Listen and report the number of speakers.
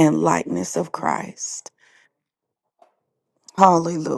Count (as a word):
one